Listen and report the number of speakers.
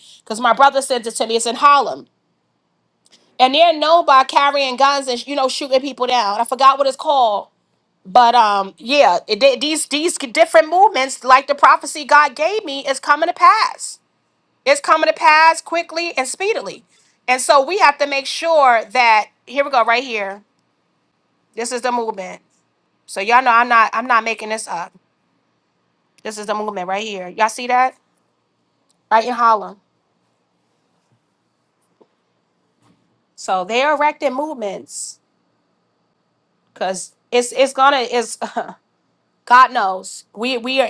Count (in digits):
1